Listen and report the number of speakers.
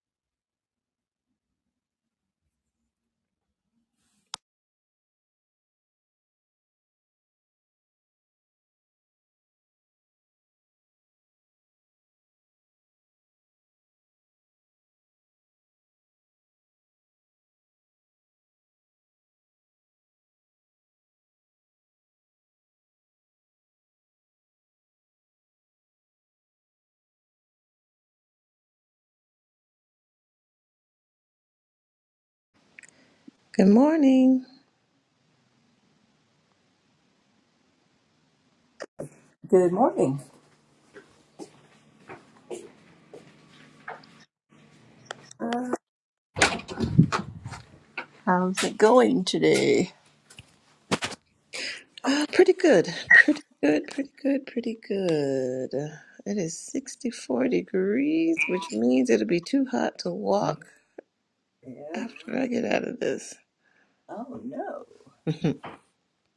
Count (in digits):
2